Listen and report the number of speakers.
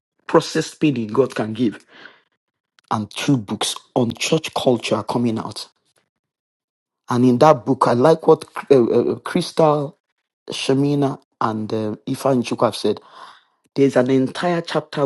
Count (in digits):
1